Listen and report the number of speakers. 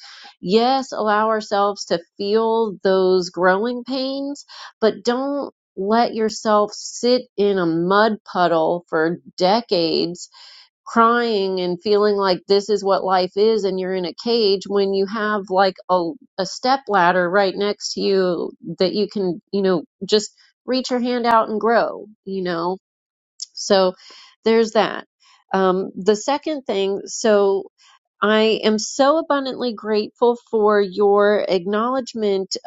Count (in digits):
1